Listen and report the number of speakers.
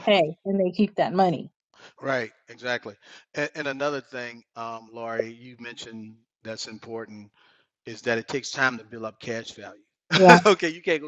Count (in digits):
2